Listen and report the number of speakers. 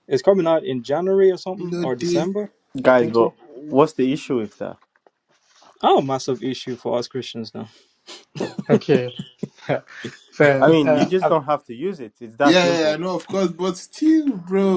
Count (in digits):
4